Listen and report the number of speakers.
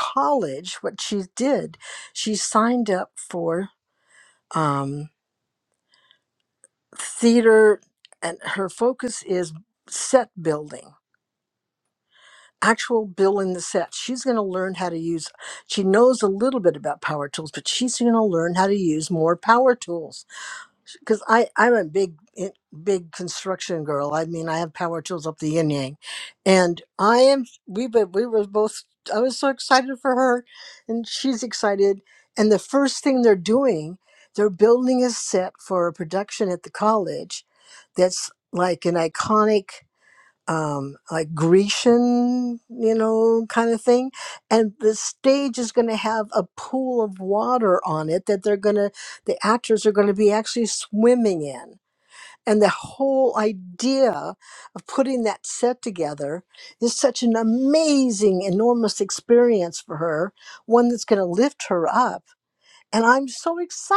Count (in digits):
1